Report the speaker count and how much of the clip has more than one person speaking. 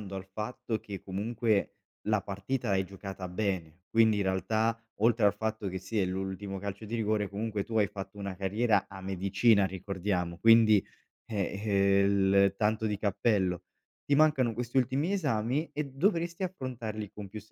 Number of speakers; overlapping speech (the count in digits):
1, no overlap